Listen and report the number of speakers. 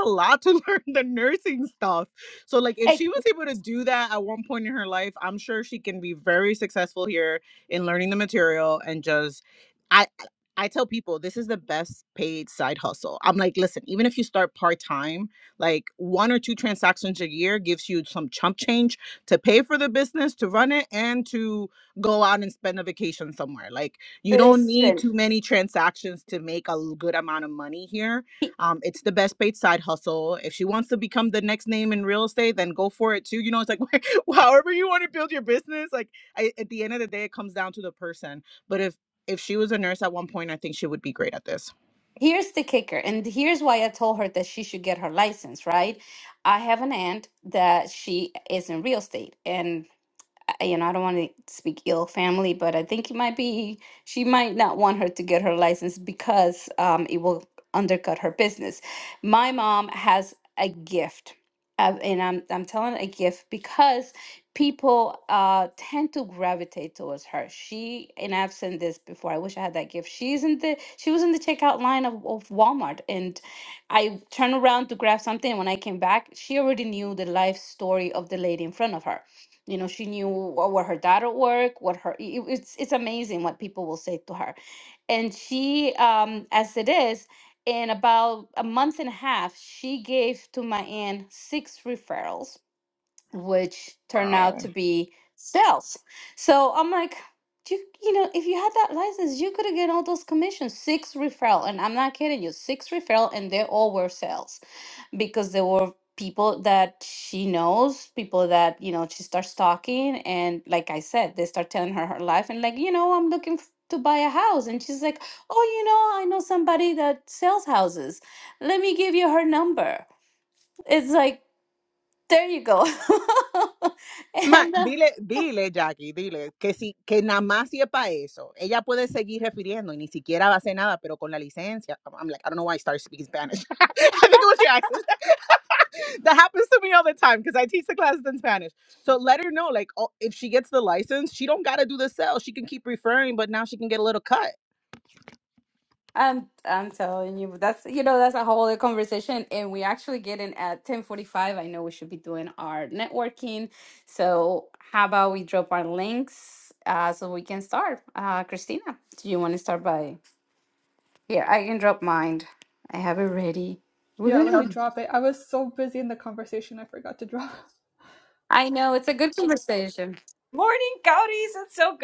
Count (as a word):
four